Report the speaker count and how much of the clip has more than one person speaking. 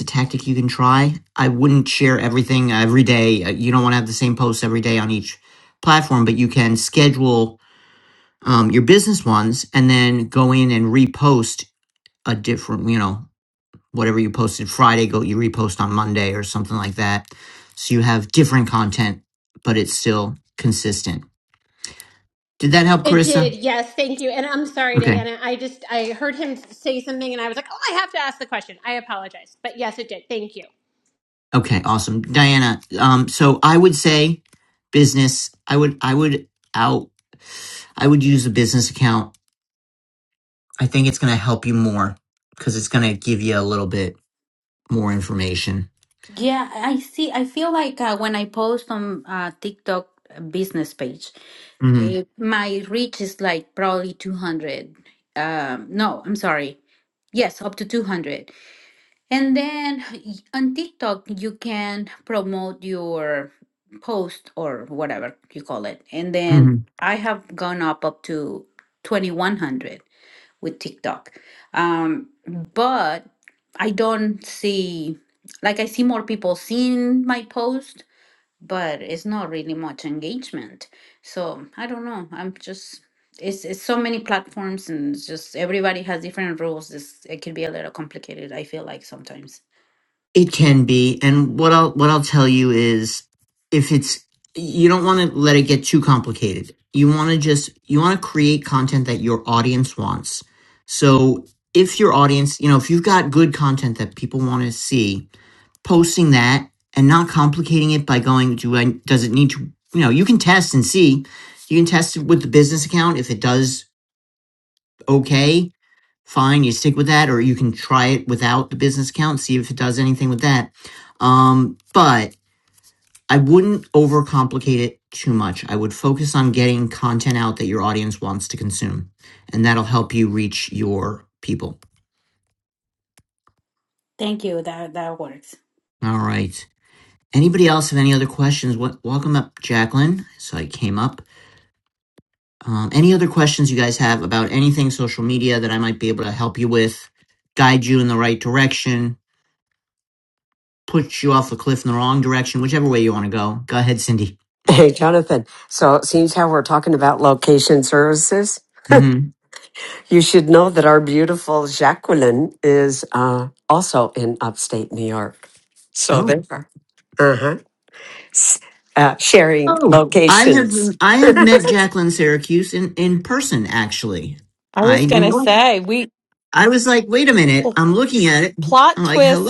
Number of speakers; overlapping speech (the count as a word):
five, about 2%